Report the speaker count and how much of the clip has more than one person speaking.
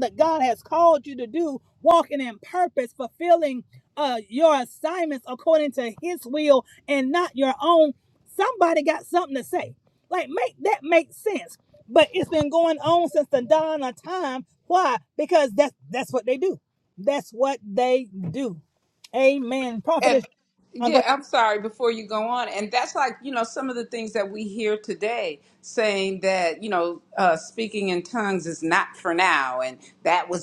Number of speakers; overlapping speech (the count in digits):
2, about 1%